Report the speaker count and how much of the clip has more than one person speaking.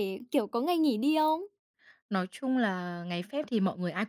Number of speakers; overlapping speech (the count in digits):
2, no overlap